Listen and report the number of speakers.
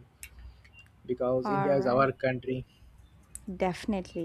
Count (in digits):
2